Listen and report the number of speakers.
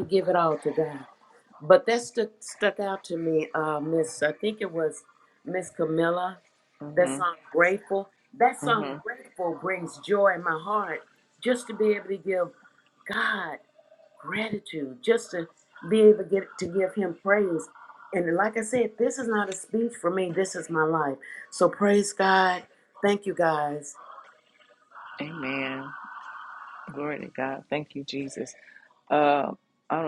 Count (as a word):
two